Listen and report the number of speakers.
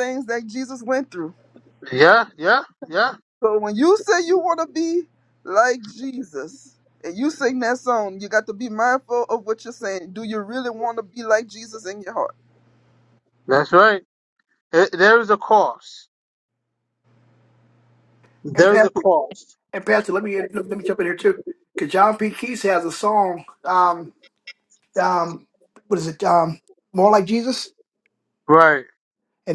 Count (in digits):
3